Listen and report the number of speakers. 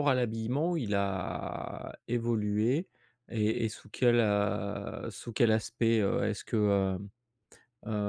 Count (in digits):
1